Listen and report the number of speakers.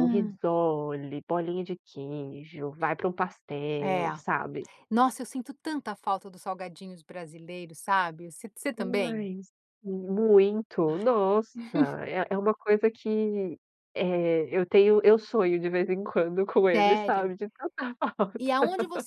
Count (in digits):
2